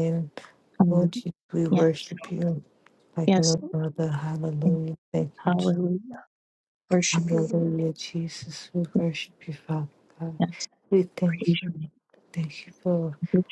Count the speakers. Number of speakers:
two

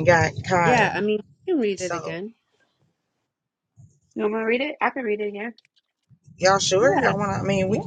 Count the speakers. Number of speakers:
three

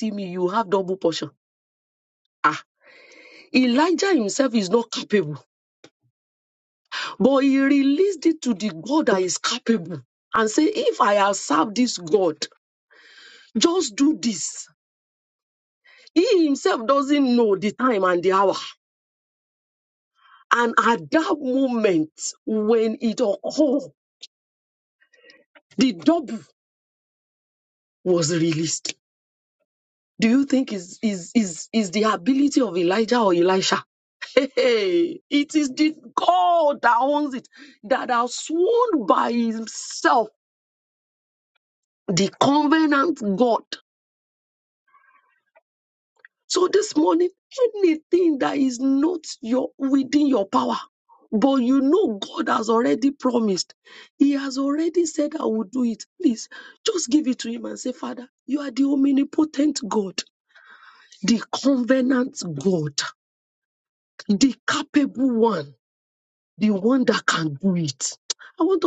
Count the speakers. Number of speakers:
one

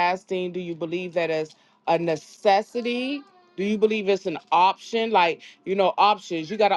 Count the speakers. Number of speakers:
one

